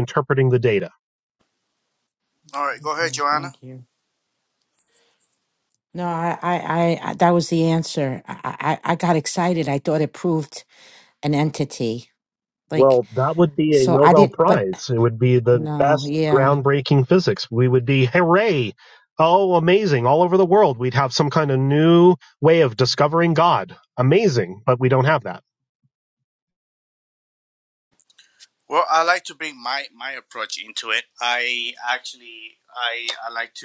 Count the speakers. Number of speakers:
three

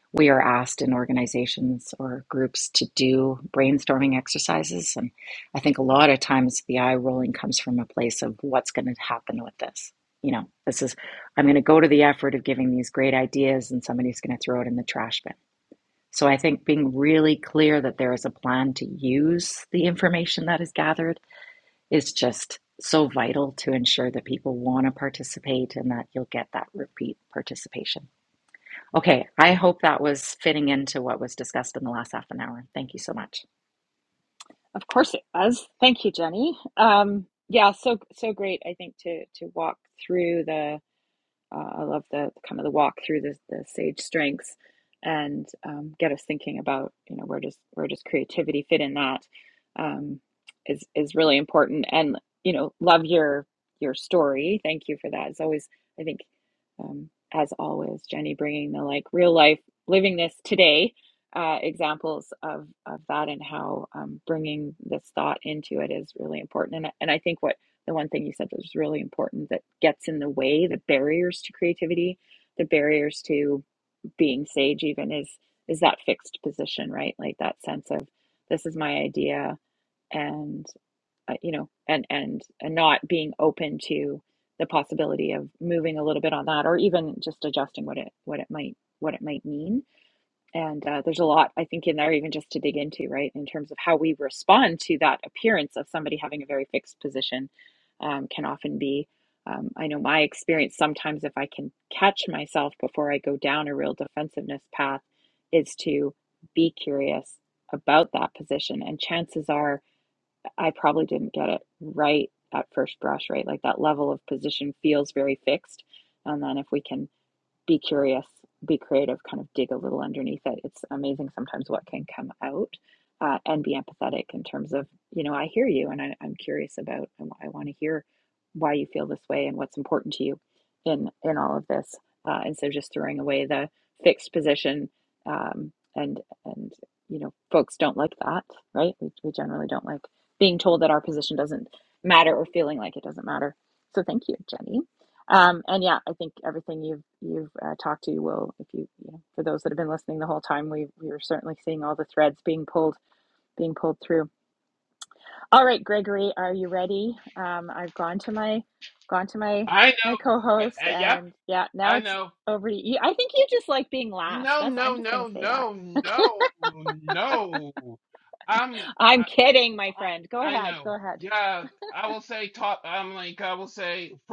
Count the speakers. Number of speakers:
three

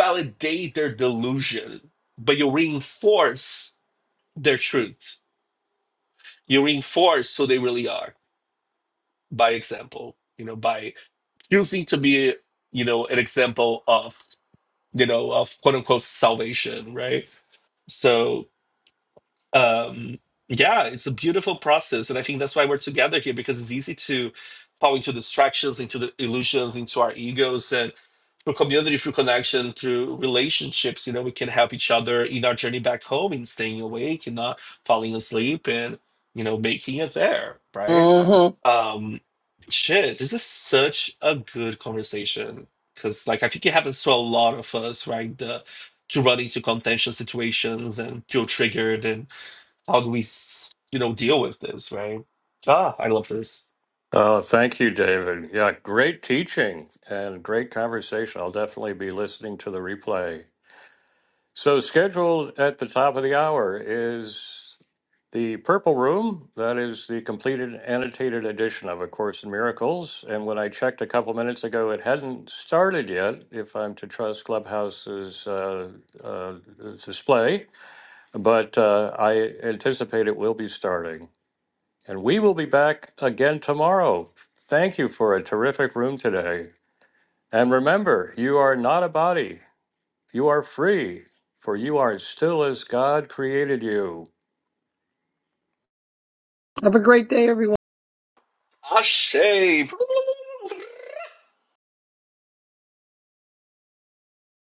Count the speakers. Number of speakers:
three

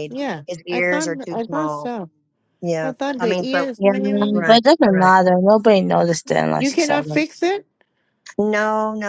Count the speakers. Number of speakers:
three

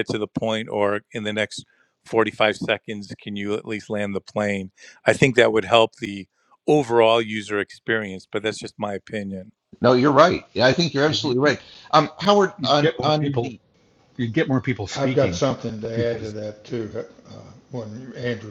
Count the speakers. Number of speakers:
four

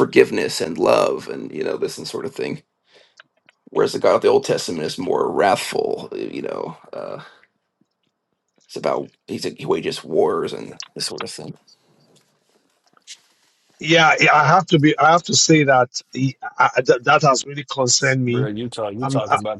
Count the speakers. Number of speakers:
three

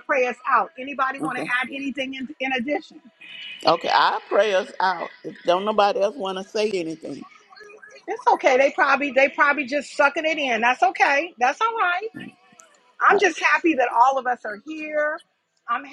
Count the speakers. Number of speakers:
two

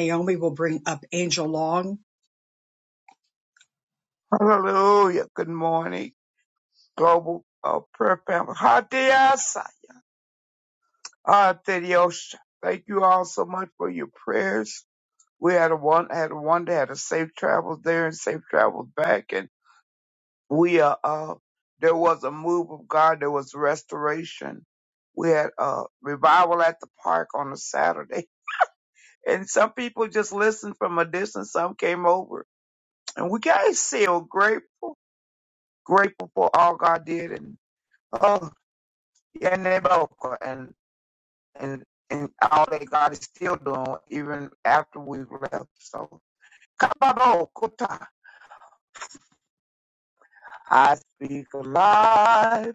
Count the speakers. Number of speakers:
two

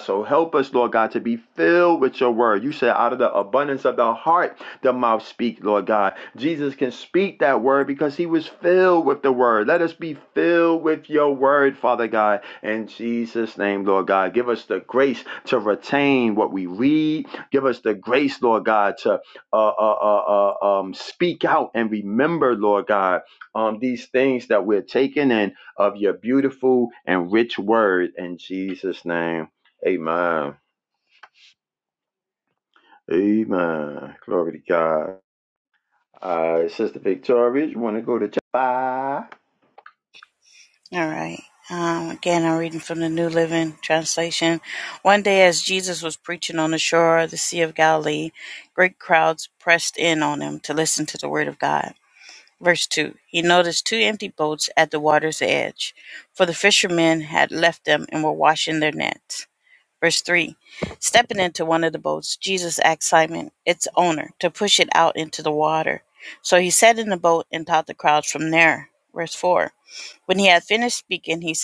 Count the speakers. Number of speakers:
two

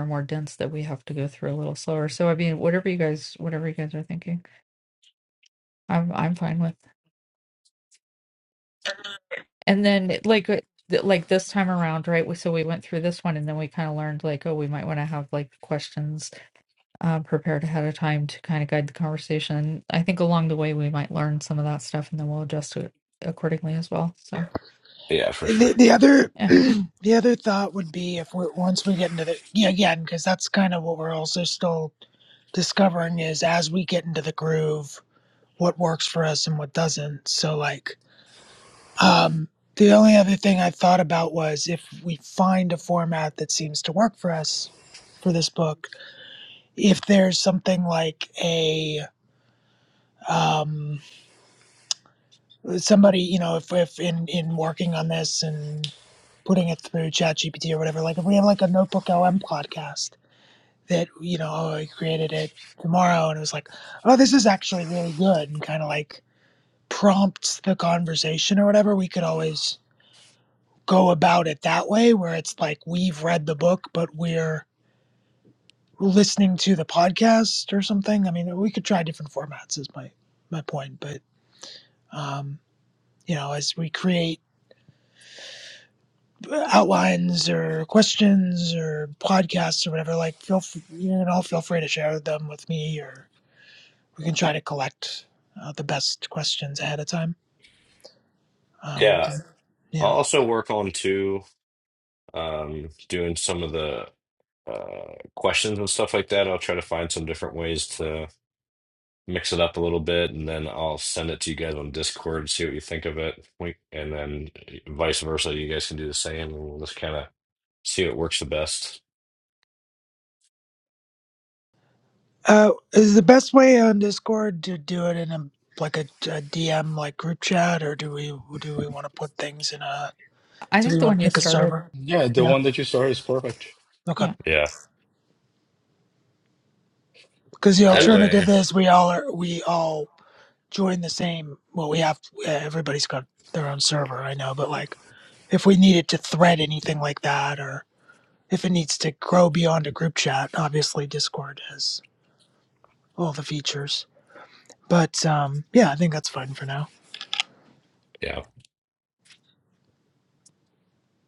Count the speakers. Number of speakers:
four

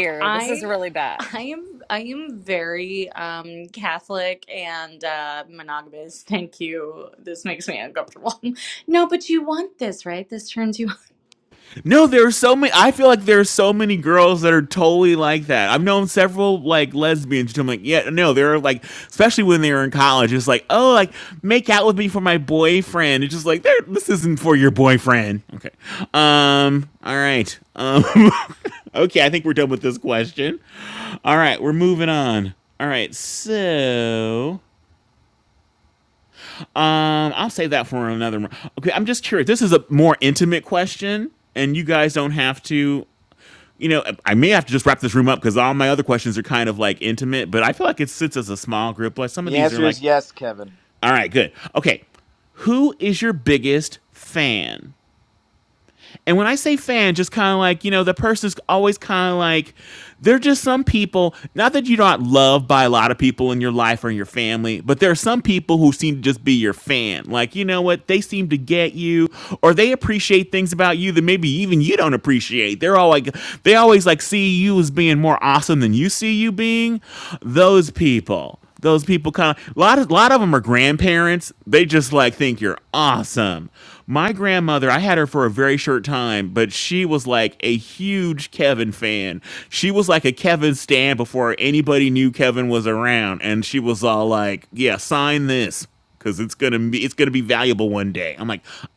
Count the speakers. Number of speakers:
four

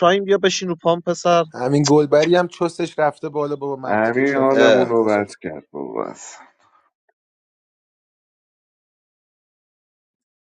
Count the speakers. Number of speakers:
three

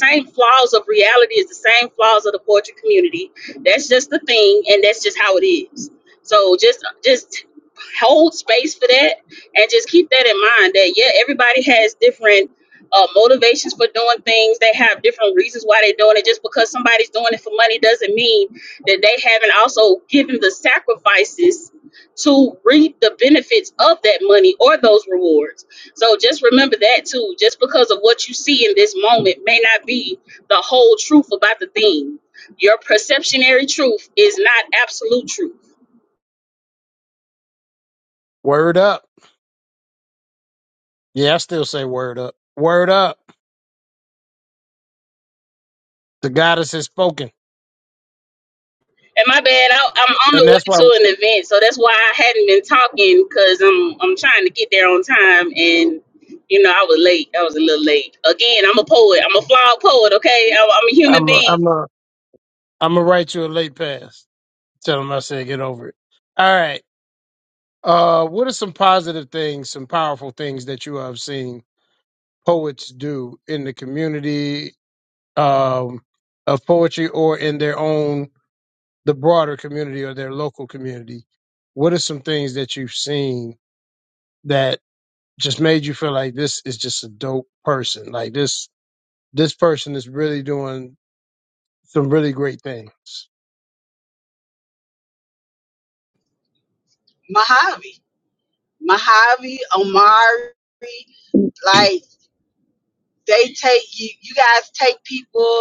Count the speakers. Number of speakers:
three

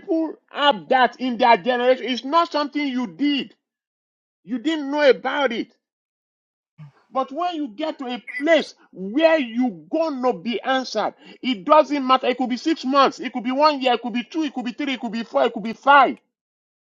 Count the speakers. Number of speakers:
one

